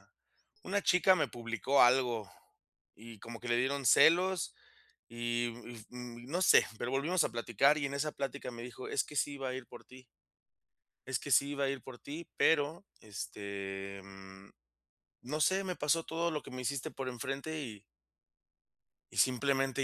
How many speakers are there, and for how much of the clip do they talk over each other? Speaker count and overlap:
1, no overlap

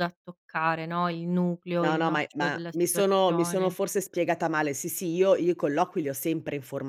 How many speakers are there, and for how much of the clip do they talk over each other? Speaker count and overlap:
2, about 28%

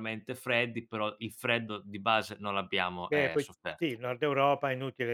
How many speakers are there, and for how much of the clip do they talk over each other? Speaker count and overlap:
2, about 7%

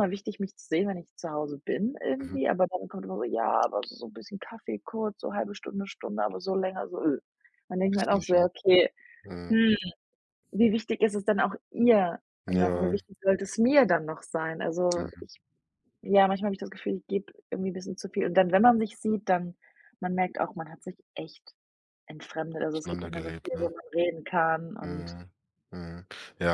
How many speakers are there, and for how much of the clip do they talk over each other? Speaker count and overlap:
2, about 10%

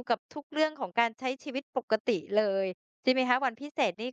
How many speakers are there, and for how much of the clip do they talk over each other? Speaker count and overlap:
1, no overlap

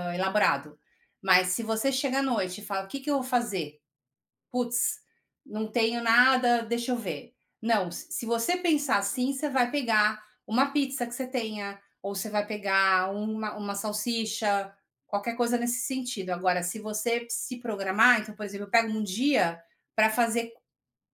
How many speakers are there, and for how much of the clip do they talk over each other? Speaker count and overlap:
1, no overlap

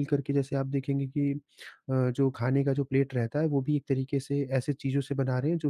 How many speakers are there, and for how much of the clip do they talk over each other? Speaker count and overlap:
1, no overlap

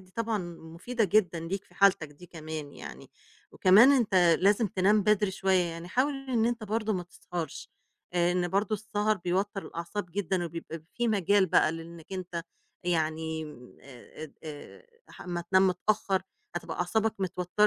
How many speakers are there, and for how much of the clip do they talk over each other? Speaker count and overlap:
1, no overlap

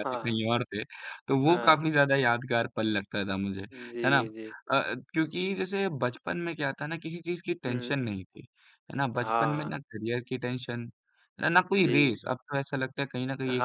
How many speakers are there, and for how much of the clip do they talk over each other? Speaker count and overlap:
2, about 17%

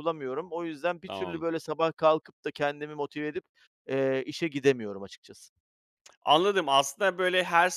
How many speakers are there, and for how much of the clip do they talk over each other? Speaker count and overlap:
2, about 4%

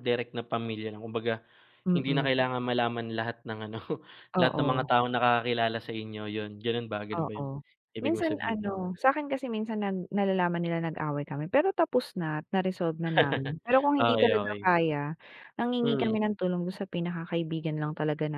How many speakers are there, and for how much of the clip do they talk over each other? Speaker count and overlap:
2, about 17%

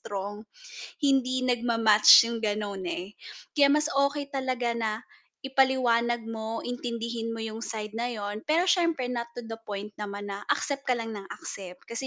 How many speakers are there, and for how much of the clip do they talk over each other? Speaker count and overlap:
1, no overlap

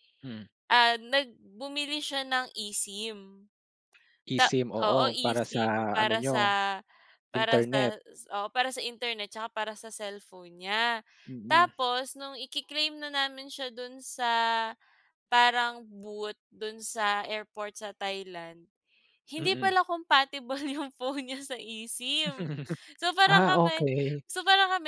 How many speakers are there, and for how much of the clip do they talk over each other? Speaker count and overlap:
2, about 15%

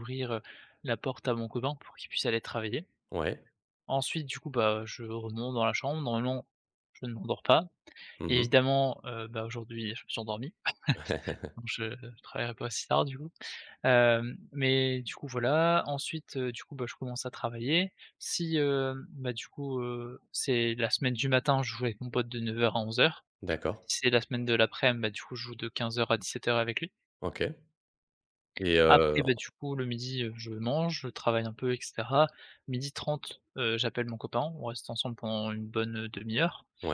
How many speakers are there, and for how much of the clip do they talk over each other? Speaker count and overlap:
2, about 2%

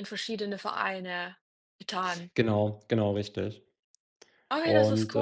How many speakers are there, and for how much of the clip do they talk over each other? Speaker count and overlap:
2, about 11%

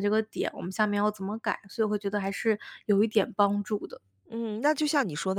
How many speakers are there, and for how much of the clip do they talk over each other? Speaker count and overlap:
2, no overlap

